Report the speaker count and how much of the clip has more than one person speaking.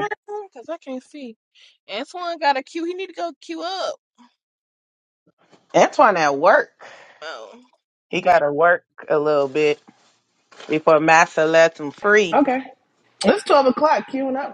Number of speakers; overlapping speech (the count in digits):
3, under 1%